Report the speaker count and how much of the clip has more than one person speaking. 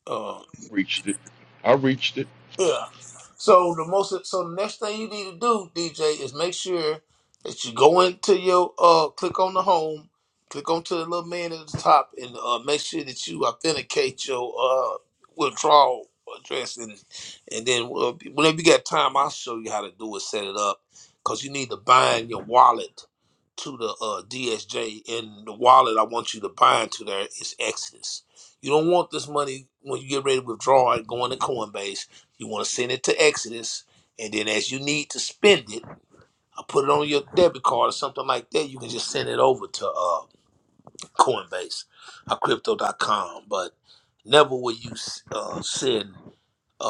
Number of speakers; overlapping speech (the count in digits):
2, no overlap